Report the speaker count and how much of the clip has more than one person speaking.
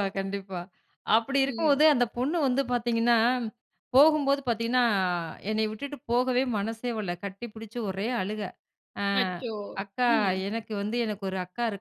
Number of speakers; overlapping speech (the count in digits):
2, about 3%